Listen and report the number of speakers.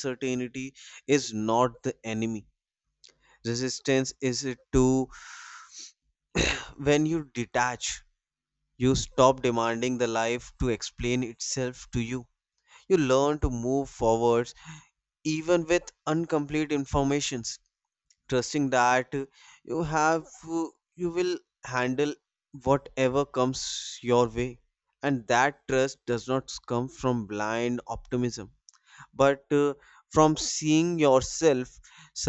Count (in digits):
1